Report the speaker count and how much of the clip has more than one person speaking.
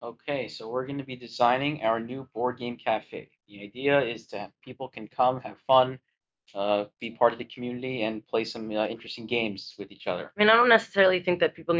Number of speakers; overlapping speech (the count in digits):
2, no overlap